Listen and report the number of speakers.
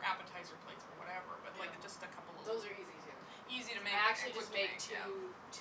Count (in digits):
2